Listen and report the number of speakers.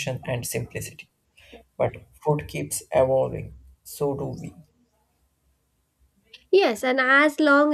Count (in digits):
2